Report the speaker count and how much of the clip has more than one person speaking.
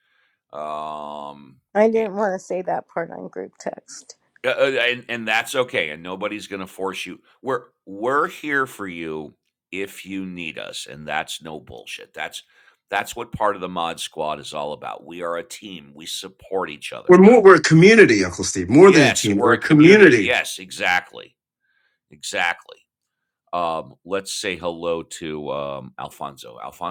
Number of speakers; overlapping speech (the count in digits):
3, about 6%